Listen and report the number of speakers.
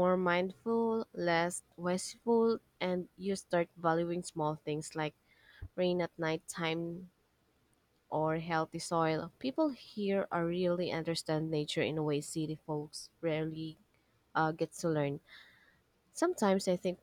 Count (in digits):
1